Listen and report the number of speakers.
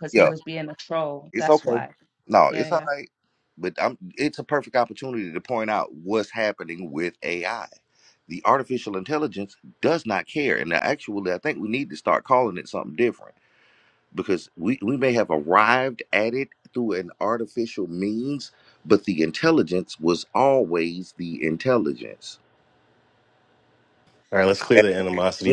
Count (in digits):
3